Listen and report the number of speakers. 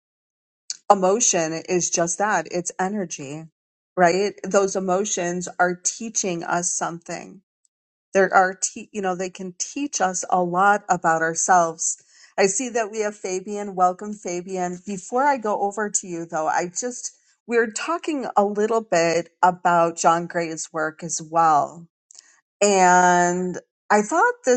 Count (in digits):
1